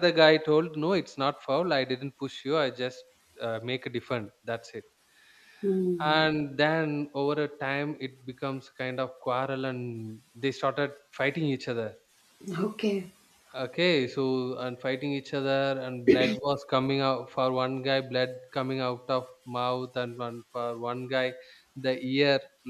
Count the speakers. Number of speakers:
two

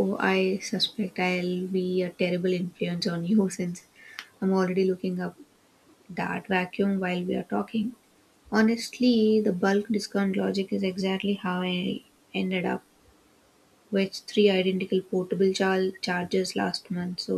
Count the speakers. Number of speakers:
one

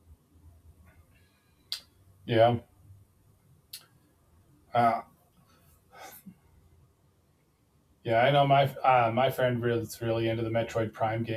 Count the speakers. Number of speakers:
one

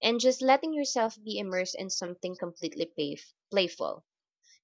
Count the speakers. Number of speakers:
one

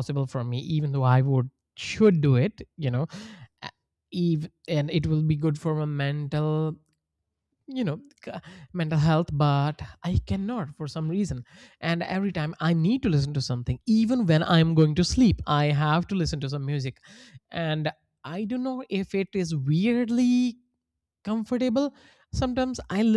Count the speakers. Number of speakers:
one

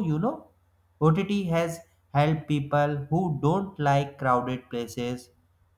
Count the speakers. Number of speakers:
one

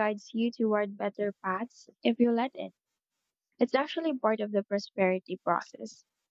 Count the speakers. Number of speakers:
one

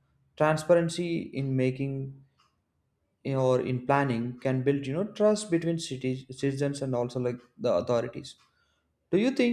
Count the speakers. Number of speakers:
one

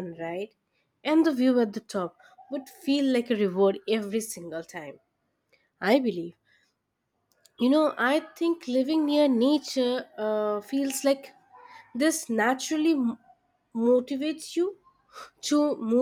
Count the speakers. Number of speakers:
one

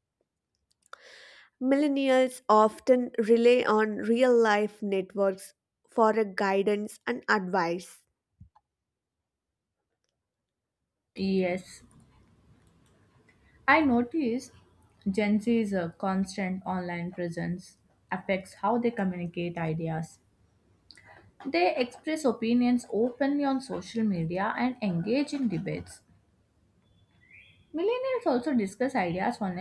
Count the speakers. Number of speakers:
two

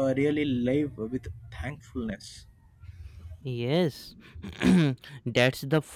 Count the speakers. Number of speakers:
two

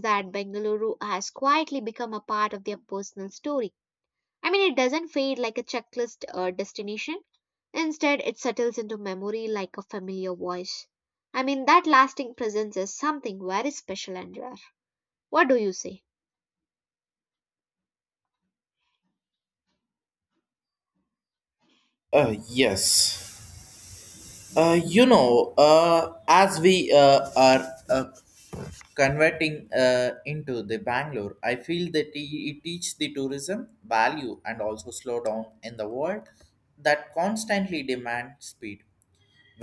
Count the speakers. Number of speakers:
two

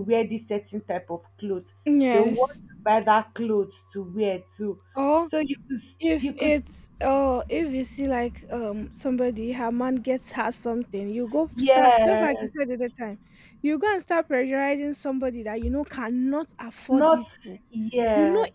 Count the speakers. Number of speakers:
two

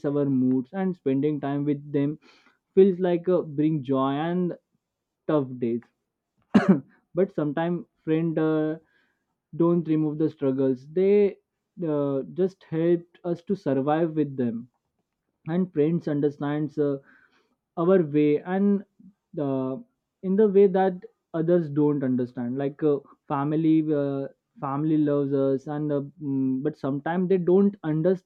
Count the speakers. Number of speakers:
one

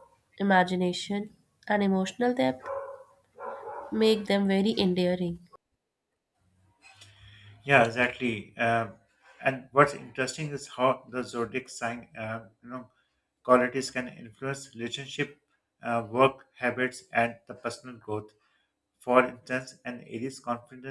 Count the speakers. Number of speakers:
two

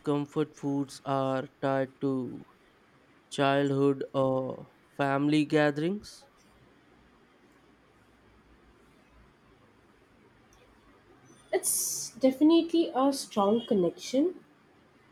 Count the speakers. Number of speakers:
two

